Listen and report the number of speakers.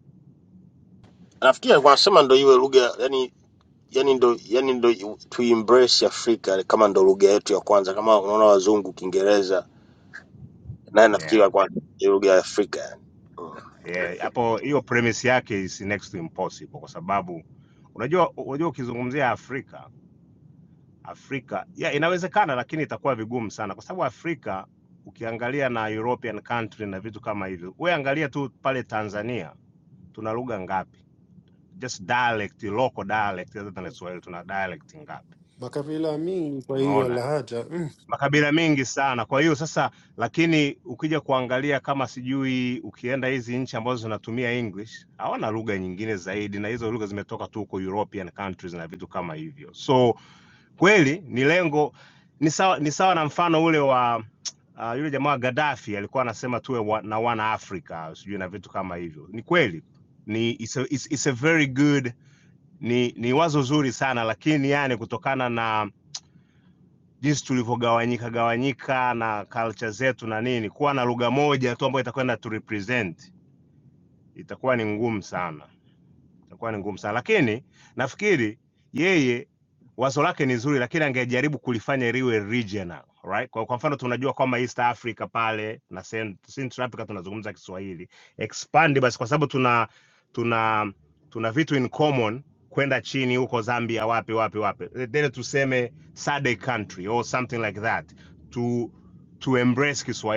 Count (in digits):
3